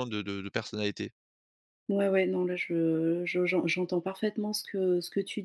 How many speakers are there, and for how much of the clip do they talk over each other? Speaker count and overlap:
2, no overlap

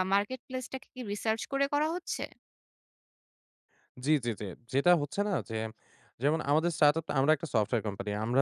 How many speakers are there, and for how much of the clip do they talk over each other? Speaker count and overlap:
2, no overlap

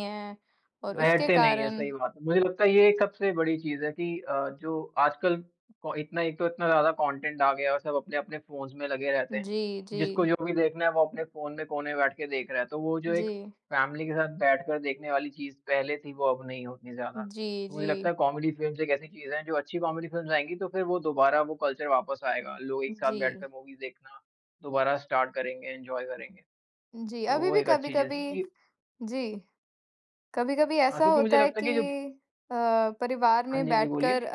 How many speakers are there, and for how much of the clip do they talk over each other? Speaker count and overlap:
2, about 15%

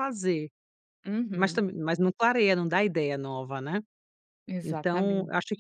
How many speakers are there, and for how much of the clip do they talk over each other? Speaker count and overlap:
2, about 15%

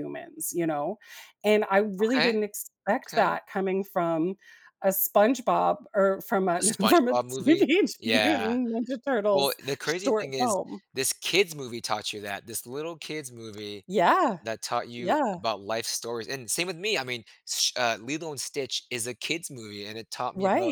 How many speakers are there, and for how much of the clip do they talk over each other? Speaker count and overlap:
2, about 19%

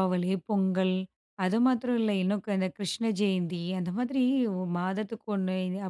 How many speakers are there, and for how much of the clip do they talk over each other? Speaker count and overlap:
1, no overlap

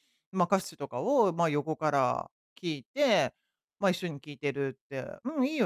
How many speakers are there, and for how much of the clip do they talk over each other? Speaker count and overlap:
1, no overlap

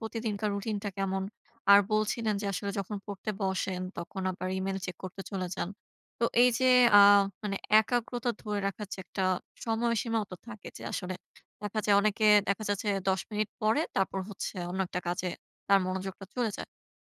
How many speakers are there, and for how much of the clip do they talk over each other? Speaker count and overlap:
1, no overlap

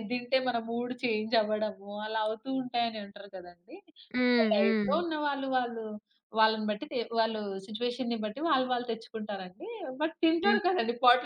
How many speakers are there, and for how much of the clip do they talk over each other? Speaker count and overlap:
2, about 6%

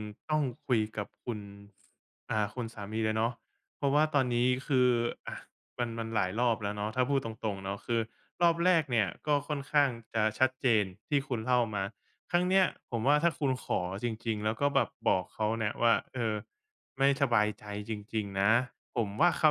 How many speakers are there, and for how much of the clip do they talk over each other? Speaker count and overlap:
1, no overlap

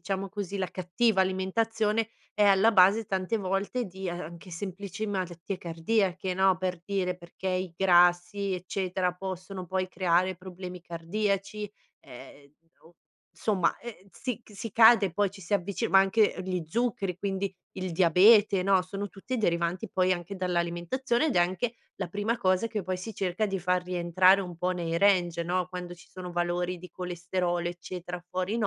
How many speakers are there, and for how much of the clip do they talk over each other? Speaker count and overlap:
1, no overlap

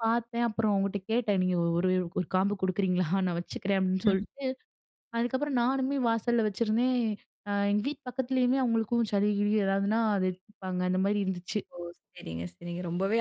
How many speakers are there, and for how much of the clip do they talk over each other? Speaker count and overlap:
2, no overlap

